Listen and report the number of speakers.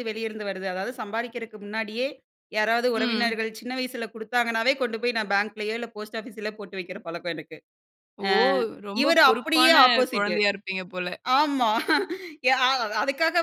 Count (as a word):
two